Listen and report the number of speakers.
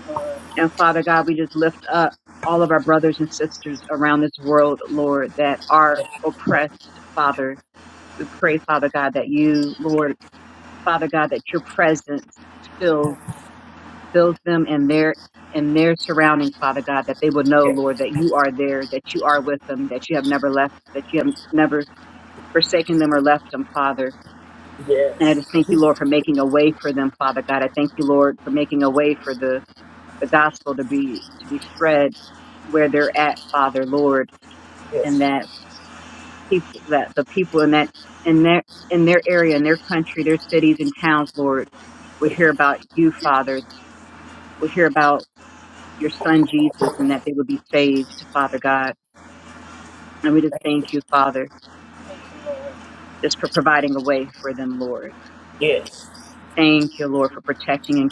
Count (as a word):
three